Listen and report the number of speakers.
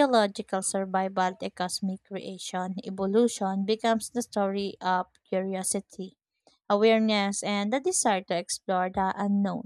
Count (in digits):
1